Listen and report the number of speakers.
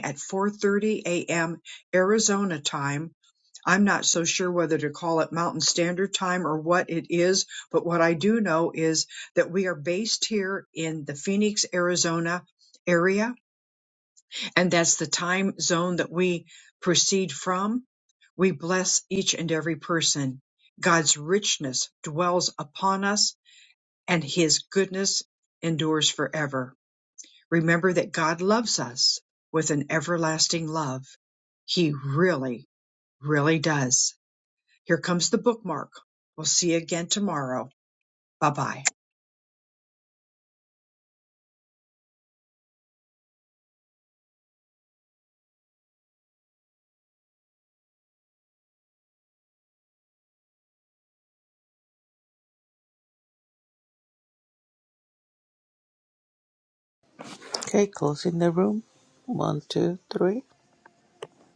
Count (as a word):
two